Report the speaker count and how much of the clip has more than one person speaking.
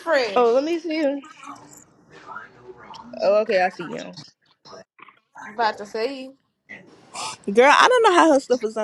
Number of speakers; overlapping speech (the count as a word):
three, about 1%